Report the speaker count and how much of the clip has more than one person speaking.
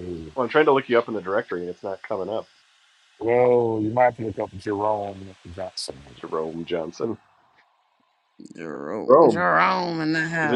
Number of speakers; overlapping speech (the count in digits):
3, about 5%